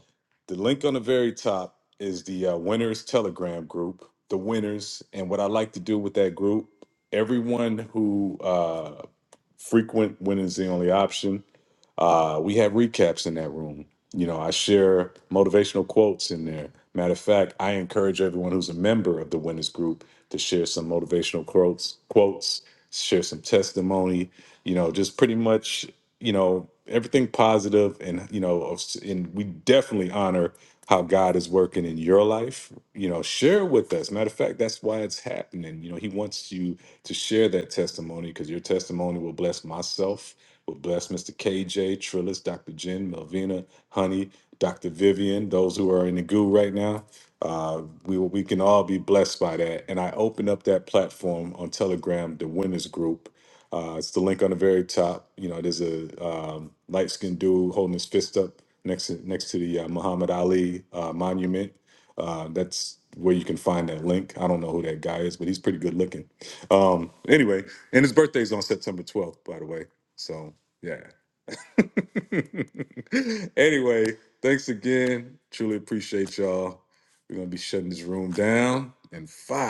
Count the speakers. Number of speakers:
one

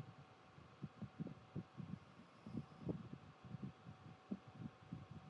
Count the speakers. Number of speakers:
zero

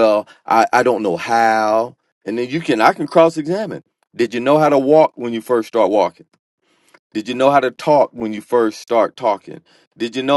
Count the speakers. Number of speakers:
one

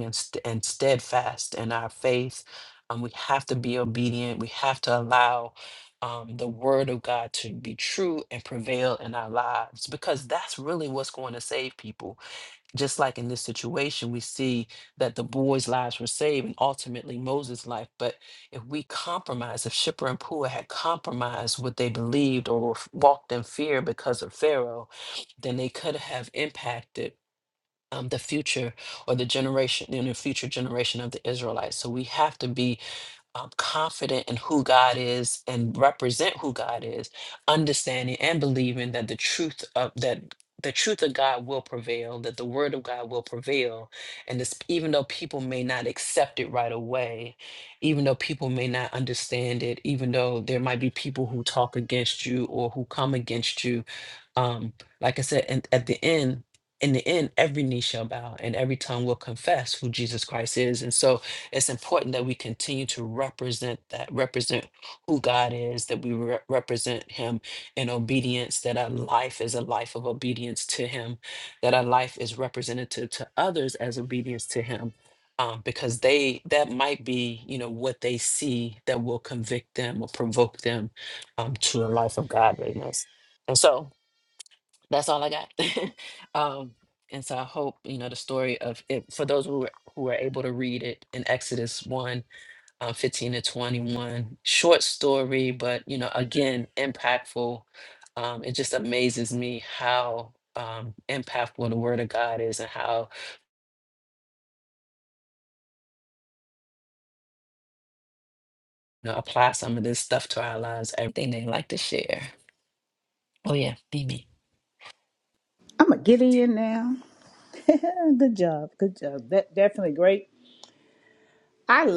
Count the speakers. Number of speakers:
two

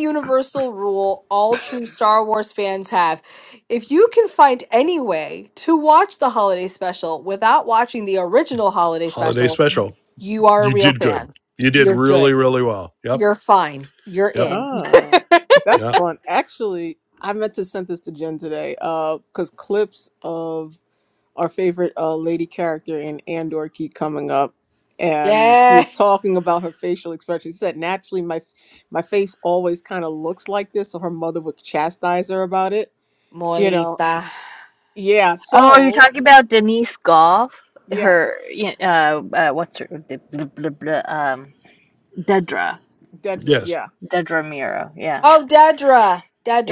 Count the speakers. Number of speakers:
four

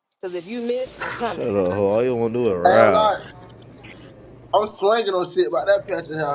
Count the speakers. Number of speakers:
three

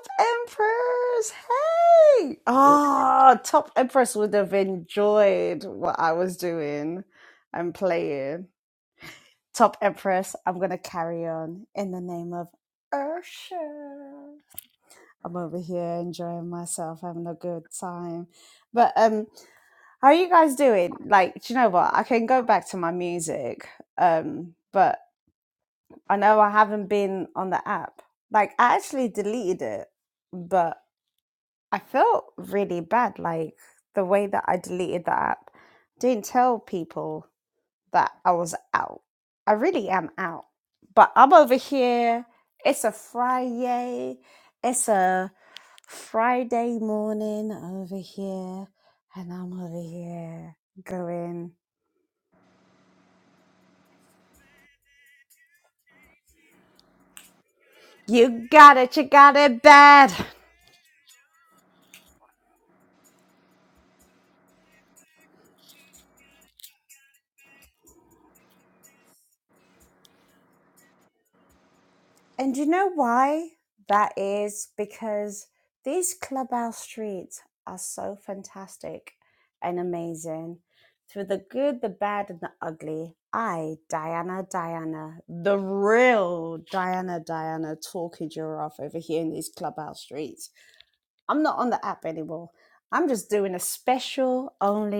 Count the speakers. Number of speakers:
one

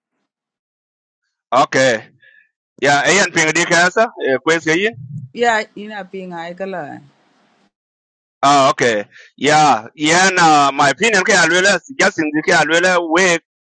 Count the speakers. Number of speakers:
two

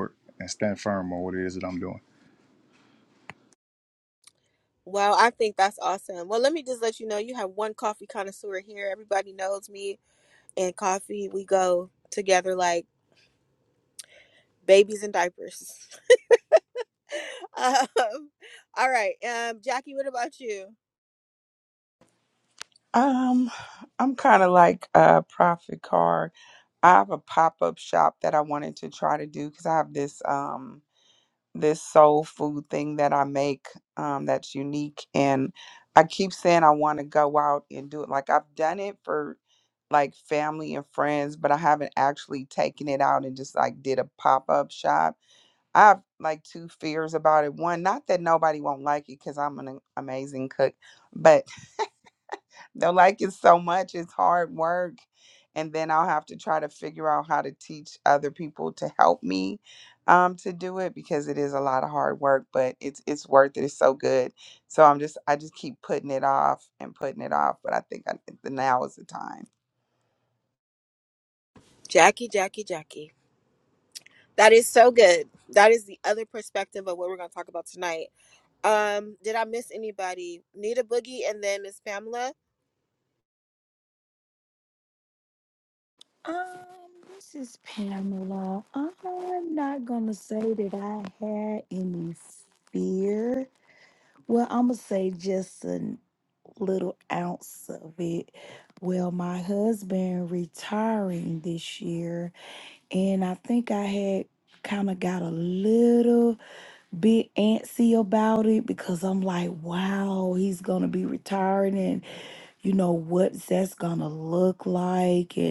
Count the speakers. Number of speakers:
four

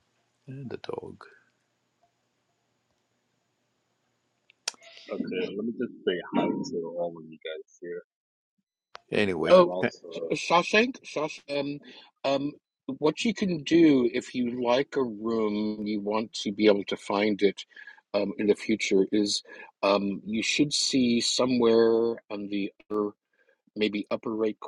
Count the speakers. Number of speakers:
three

